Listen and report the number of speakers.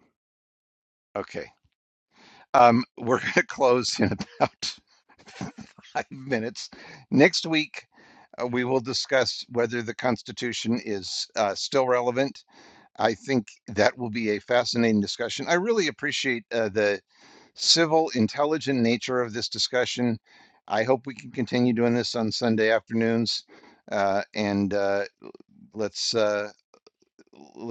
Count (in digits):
1